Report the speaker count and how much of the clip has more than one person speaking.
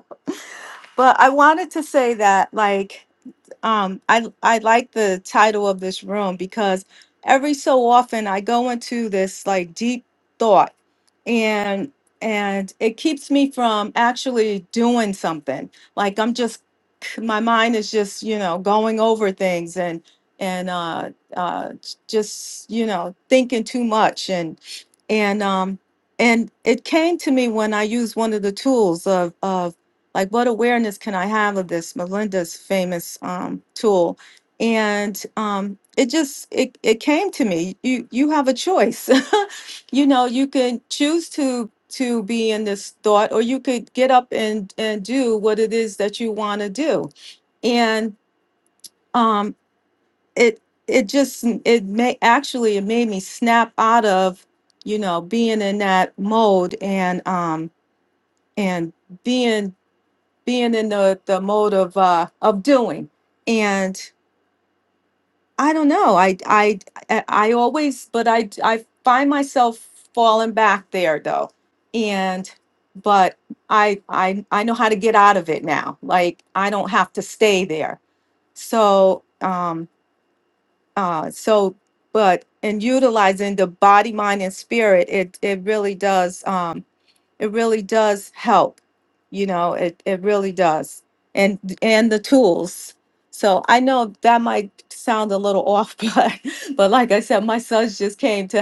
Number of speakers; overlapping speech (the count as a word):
one, no overlap